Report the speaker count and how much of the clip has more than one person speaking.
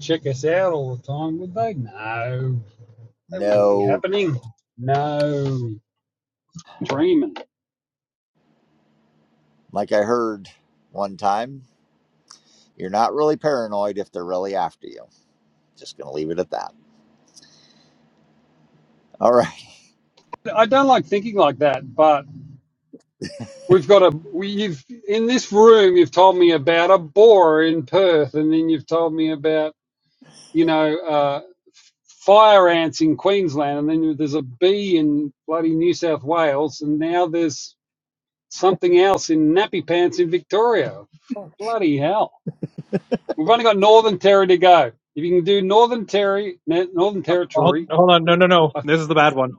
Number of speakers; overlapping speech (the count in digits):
3, about 2%